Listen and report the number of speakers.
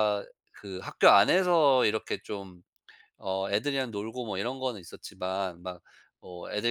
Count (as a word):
one